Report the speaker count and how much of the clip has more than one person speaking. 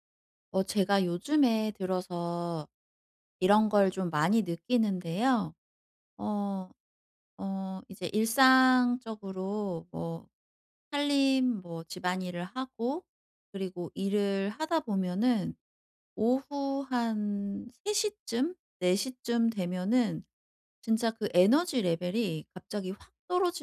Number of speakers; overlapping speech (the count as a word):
one, no overlap